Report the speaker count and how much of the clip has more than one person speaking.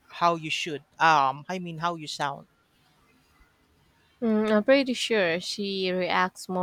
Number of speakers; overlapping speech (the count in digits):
2, no overlap